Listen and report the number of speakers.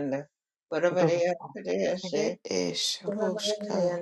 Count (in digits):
2